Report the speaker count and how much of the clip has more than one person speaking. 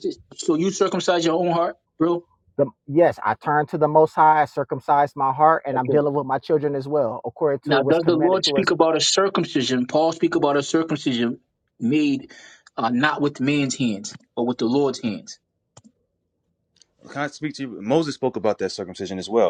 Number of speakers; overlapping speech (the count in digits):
3, about 7%